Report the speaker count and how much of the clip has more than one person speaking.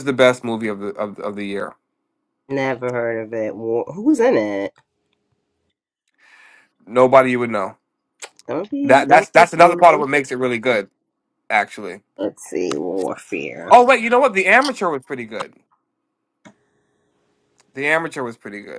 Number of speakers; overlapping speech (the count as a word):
two, about 7%